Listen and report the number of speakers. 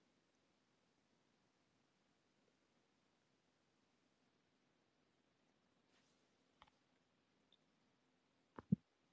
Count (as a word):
zero